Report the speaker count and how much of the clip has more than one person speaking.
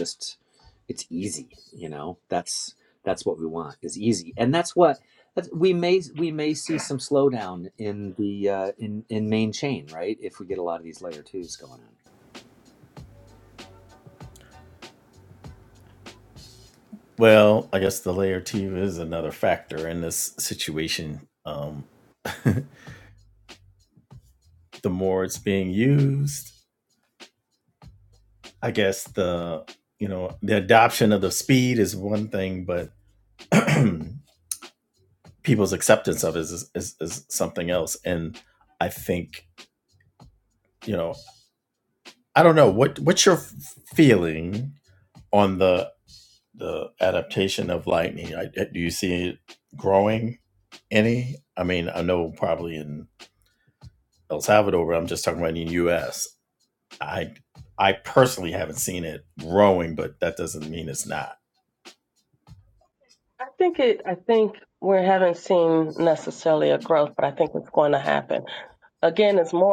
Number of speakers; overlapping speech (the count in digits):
3, no overlap